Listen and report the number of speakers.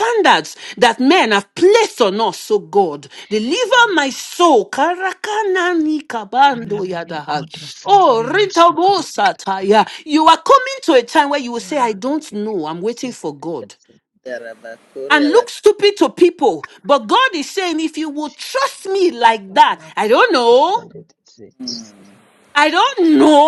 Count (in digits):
3